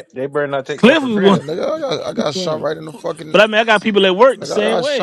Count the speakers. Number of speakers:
three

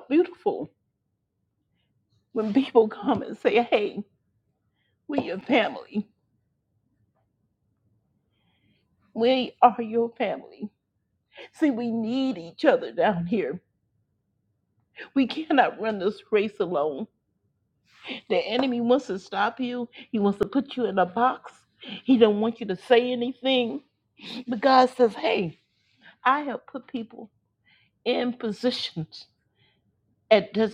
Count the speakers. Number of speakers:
one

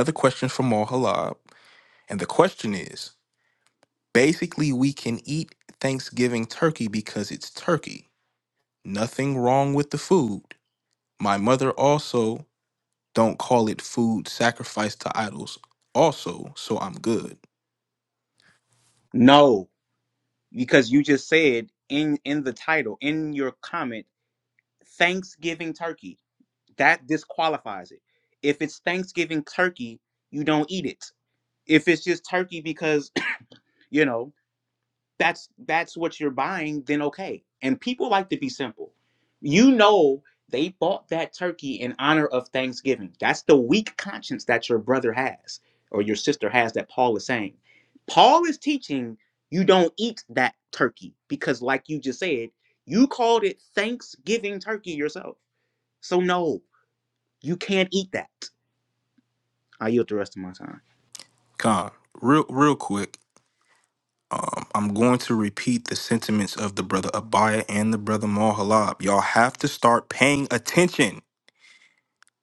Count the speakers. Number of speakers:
two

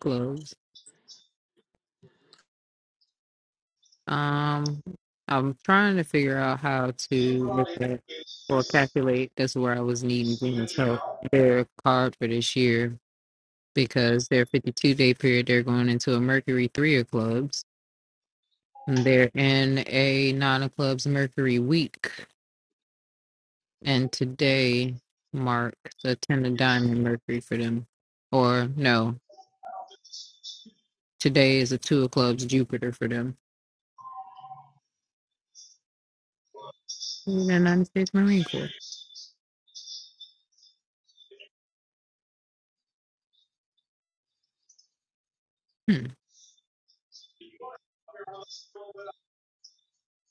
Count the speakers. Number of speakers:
one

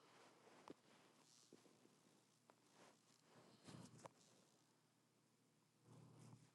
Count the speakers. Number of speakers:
zero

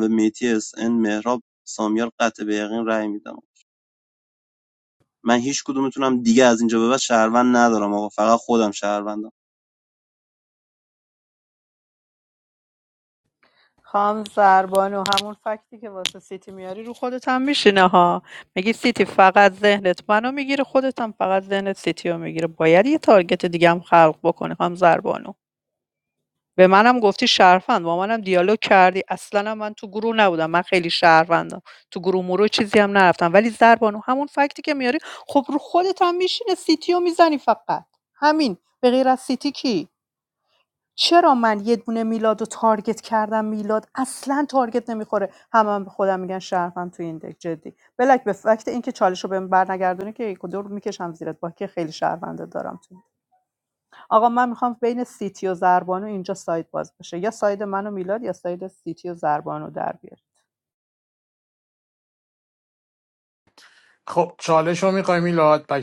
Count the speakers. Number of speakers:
three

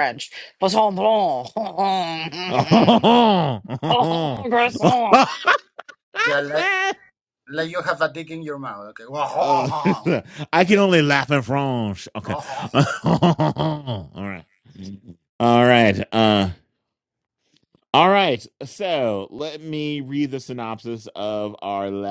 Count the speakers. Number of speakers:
three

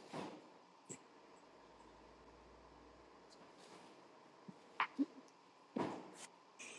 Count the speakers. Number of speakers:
zero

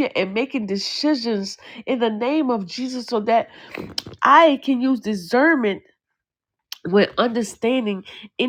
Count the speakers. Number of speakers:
one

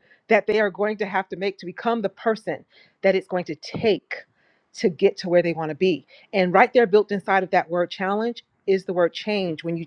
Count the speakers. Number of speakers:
one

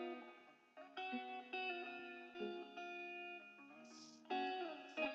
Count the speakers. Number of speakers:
zero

